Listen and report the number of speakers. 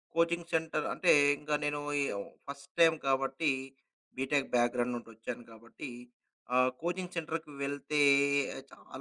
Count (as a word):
one